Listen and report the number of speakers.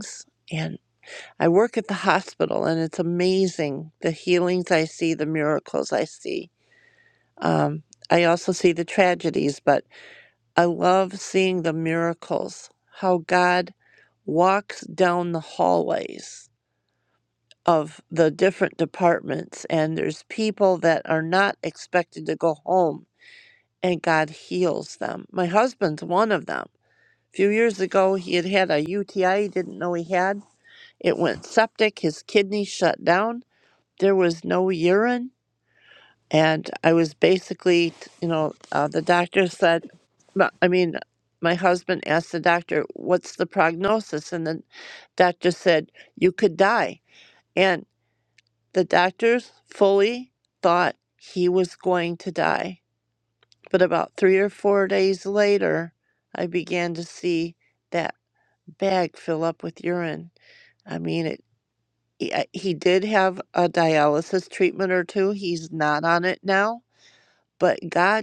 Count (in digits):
1